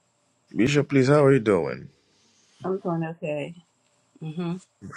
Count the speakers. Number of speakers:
two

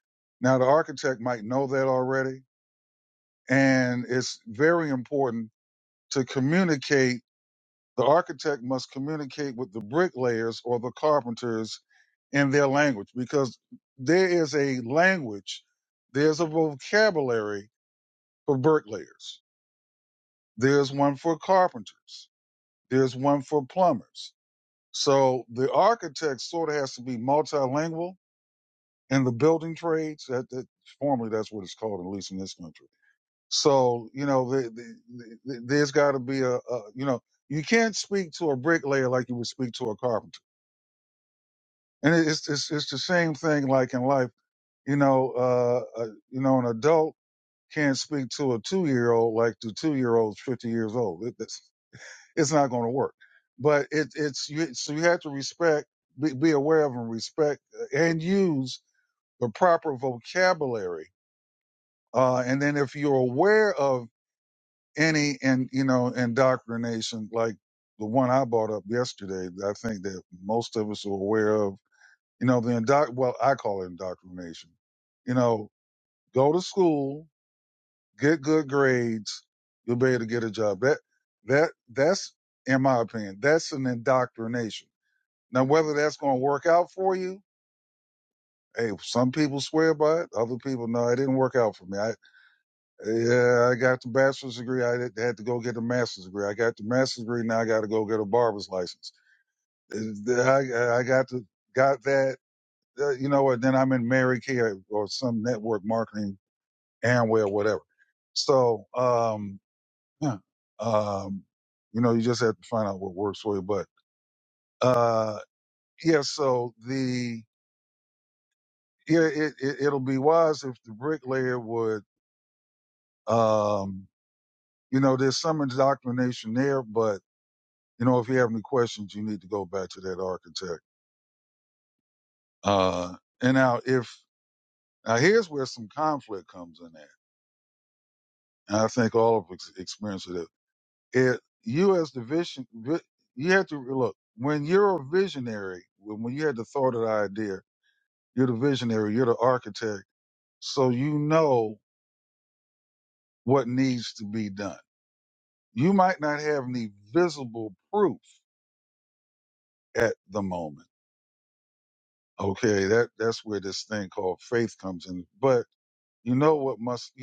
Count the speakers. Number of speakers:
one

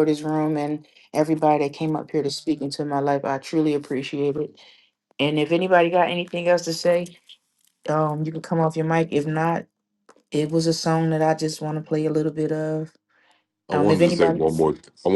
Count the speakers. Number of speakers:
two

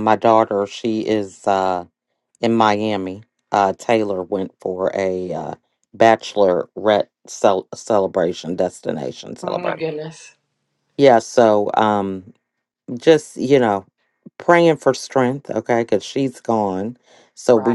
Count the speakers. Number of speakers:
two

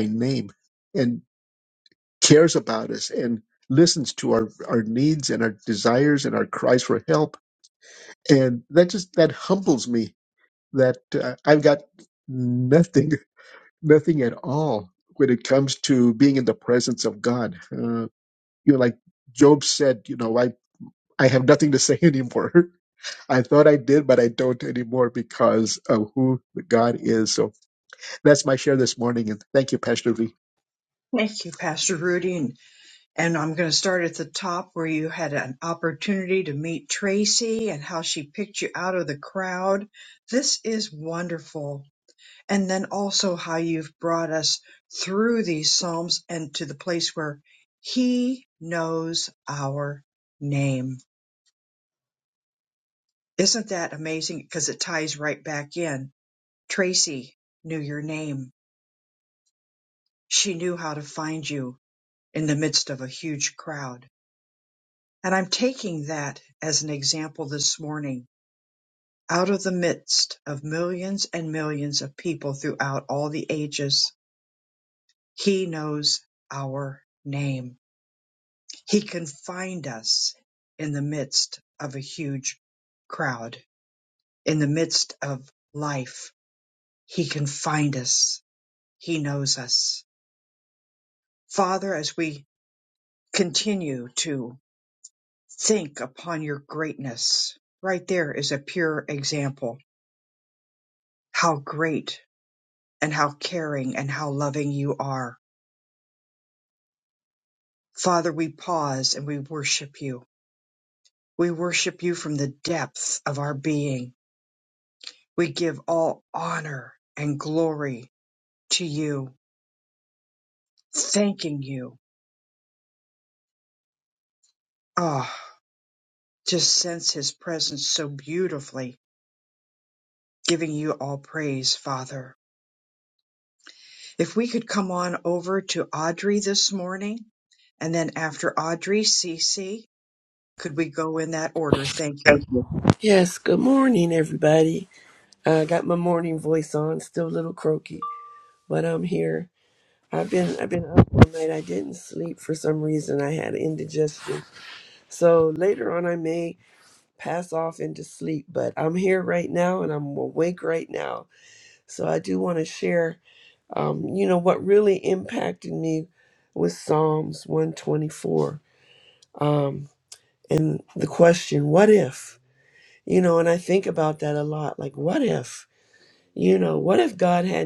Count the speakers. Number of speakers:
three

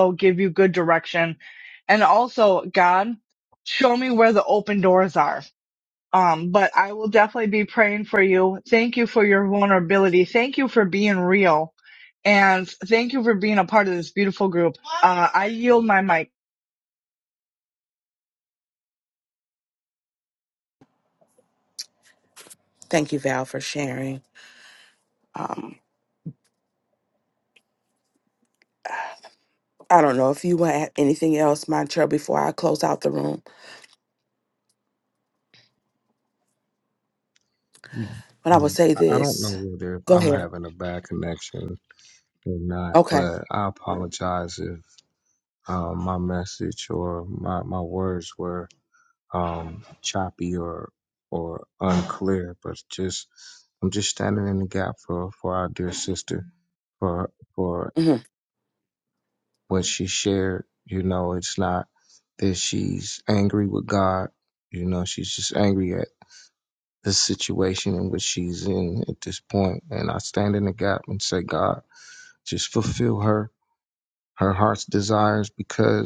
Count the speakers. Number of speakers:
three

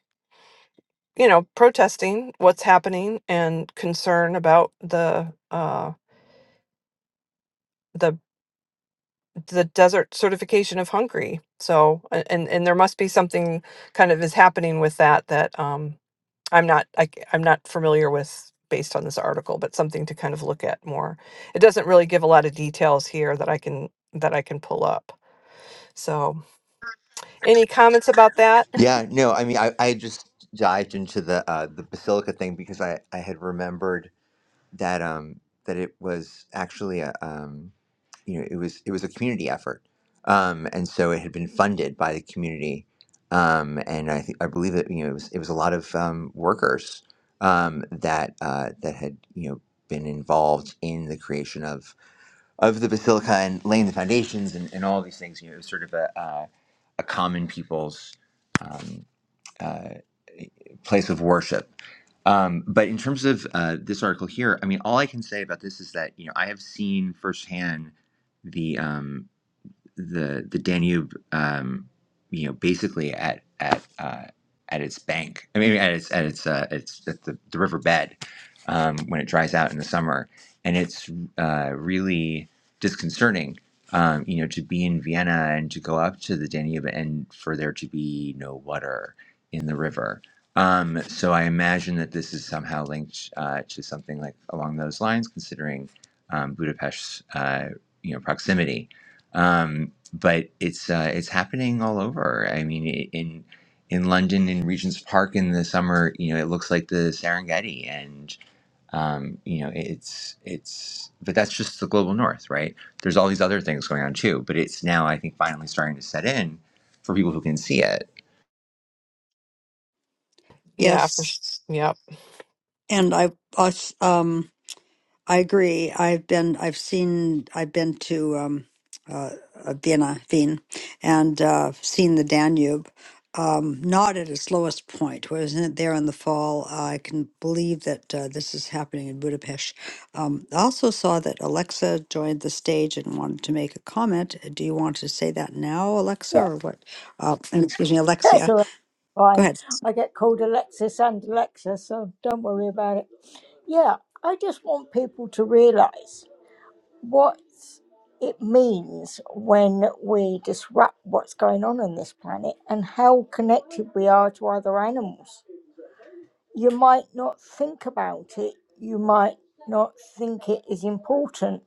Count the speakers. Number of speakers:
four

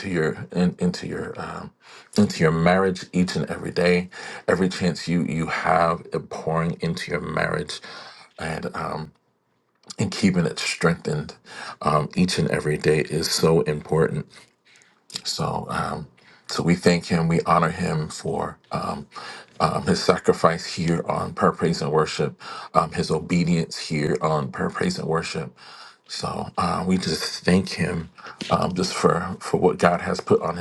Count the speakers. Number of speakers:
one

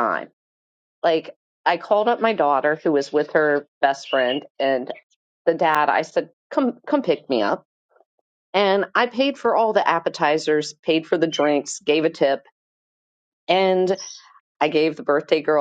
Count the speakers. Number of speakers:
one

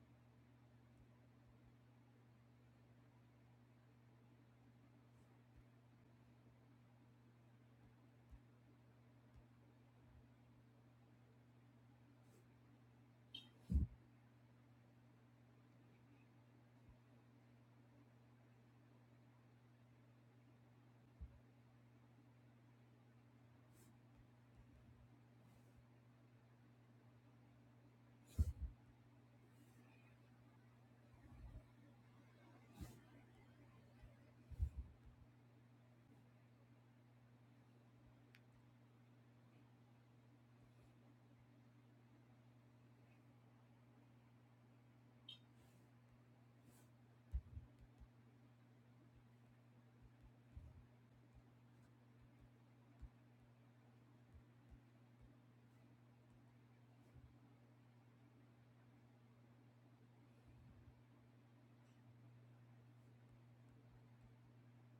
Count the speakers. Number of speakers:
zero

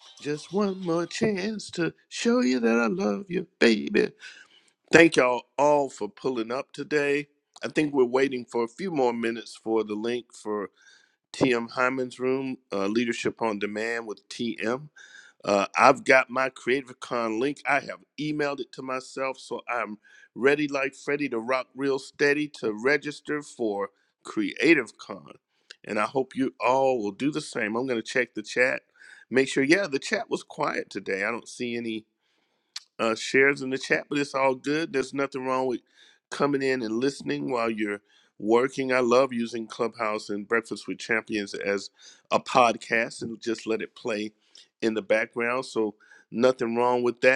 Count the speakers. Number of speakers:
one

